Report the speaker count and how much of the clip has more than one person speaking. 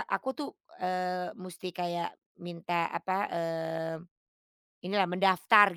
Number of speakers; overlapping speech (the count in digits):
1, no overlap